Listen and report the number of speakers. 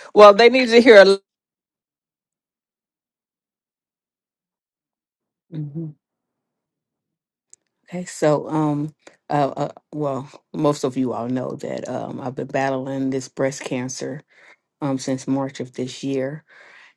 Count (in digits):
2